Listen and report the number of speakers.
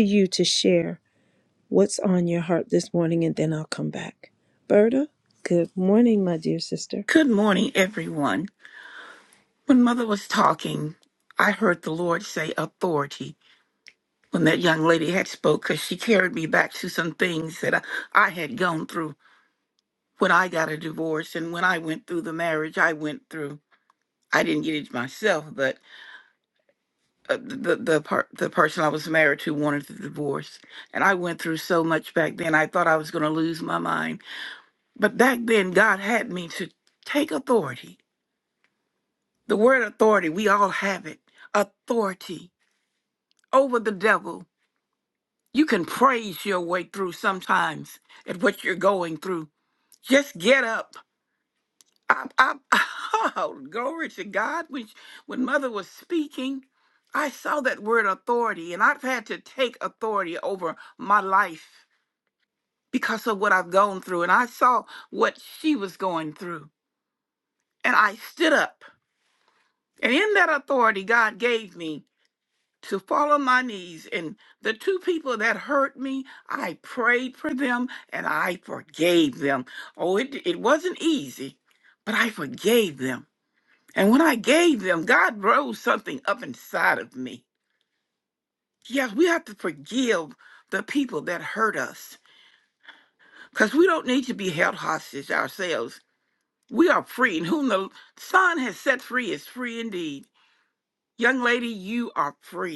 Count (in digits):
2